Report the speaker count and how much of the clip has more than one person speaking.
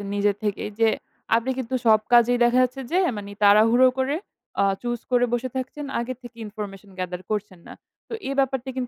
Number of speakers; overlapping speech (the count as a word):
one, no overlap